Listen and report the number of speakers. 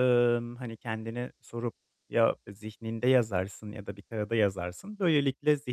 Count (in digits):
1